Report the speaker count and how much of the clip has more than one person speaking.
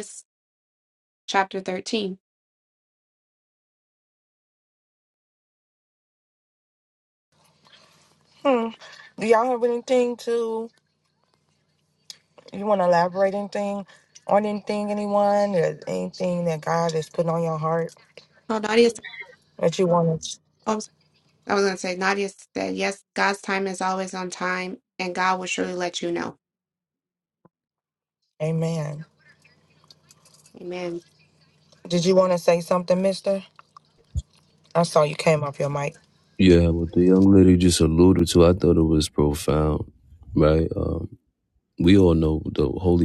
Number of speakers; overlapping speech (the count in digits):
3, no overlap